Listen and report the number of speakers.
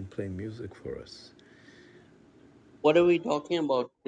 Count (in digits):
2